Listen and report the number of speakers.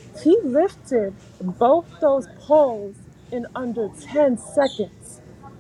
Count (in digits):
1